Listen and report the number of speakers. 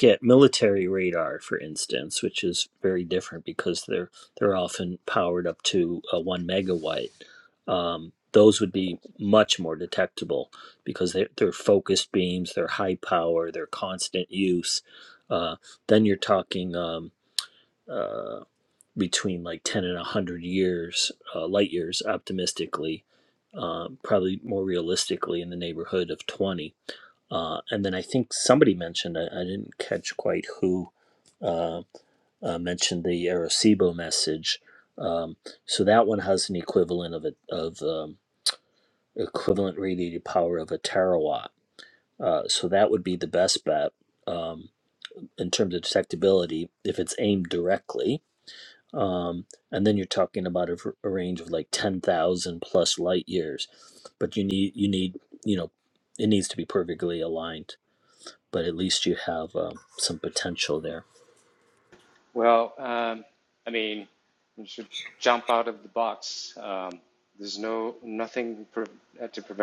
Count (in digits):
2